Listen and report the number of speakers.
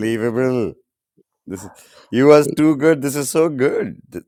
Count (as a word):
one